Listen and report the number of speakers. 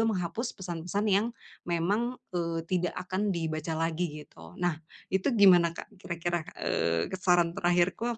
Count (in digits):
1